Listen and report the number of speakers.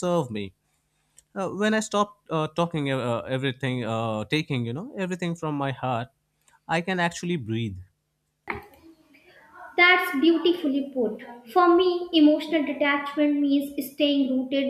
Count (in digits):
2